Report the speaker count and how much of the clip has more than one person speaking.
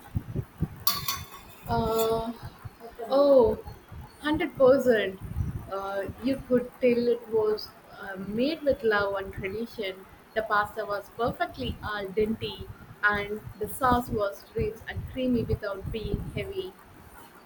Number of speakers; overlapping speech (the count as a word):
one, no overlap